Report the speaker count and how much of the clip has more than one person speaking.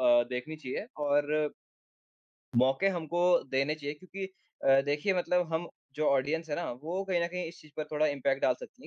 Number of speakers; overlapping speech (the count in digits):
1, no overlap